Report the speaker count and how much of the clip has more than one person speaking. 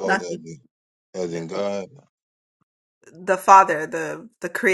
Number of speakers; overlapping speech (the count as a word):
two, about 5%